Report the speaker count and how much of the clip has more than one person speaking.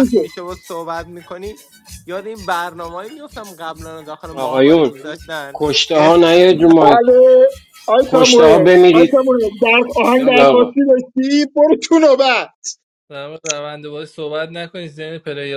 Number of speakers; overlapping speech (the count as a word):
four, about 17%